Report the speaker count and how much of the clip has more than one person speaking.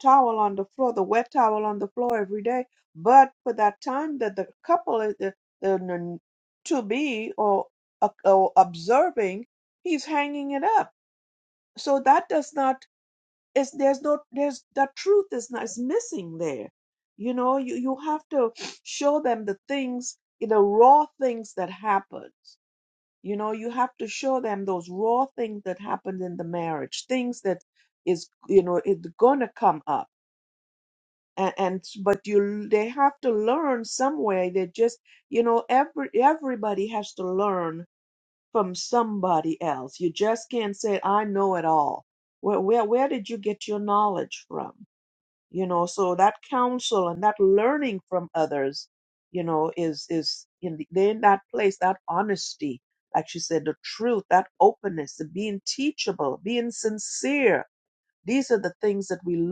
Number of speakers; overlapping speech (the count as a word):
one, no overlap